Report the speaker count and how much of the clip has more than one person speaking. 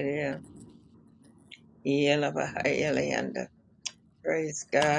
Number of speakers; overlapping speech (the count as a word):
one, no overlap